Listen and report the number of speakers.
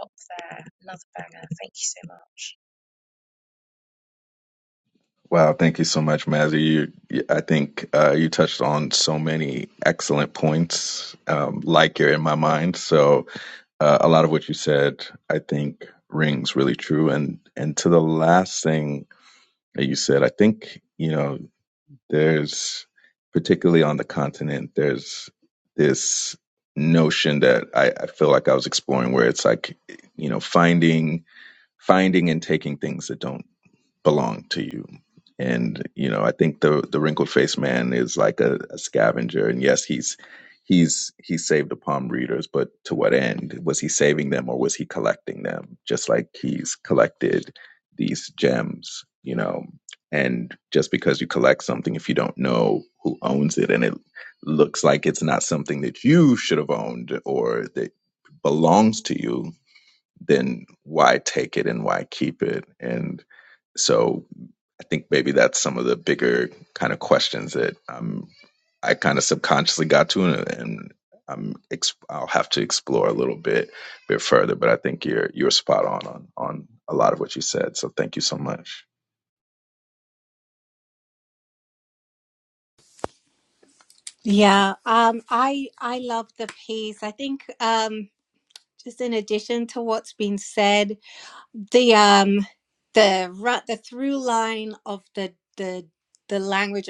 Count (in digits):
3